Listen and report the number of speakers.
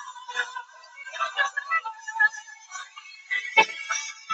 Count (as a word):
zero